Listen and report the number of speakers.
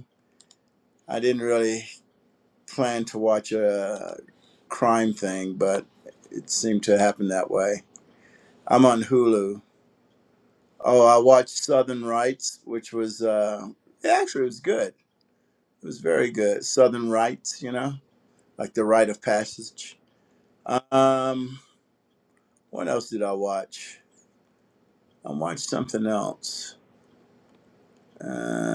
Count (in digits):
1